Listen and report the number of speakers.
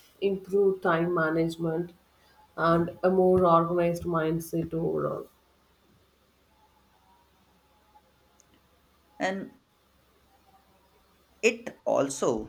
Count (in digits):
2